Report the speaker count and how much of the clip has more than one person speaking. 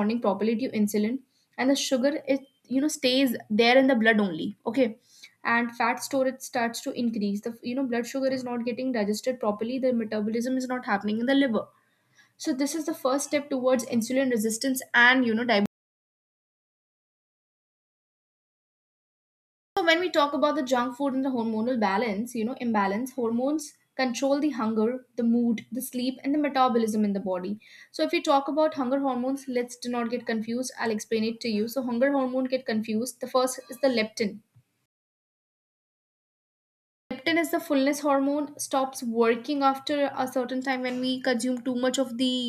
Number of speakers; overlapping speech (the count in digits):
1, no overlap